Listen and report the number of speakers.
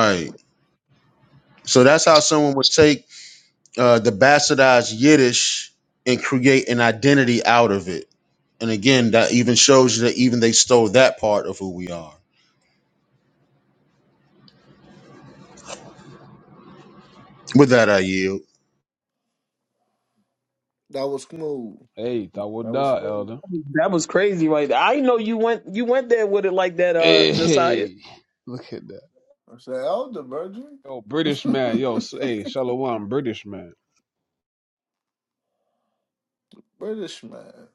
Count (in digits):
4